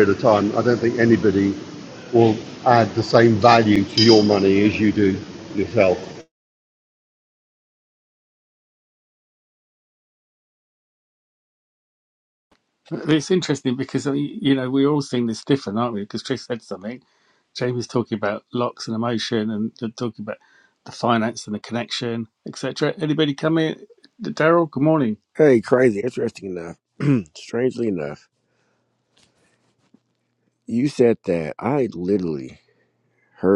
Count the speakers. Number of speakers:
three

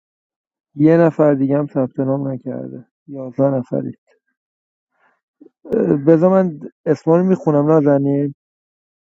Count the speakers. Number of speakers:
one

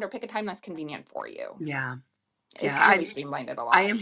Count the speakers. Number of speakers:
two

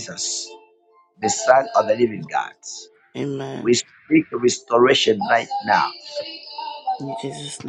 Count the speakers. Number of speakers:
two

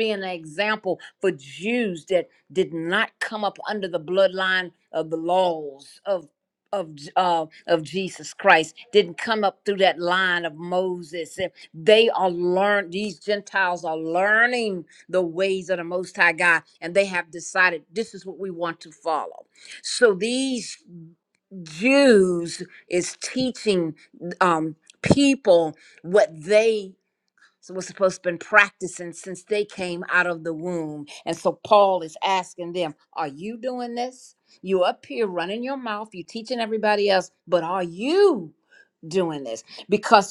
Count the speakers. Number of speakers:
one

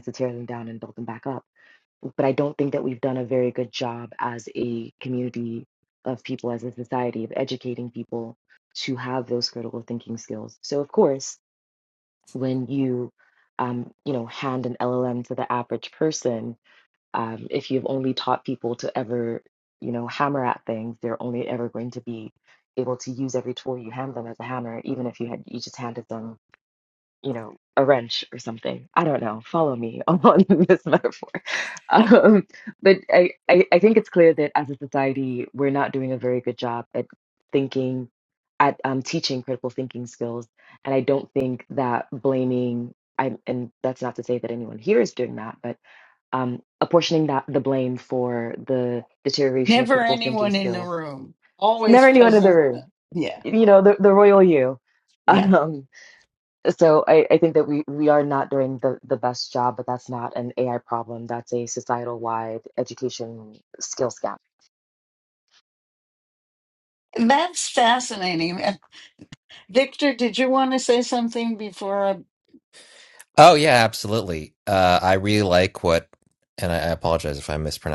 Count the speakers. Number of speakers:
three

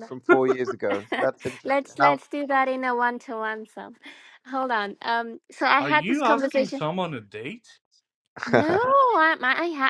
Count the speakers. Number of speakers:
three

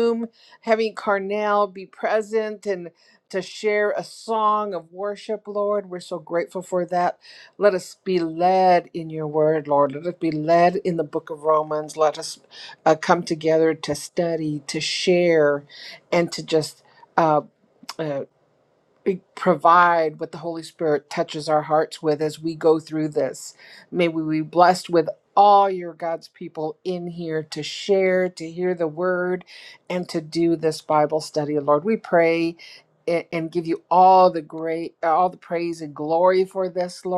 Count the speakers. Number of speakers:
one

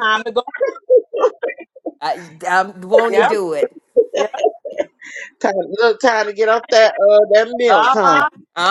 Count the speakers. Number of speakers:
three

